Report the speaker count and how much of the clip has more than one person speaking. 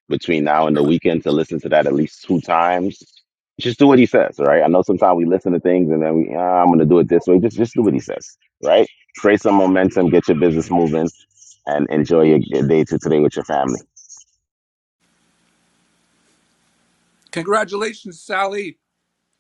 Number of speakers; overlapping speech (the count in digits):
2, no overlap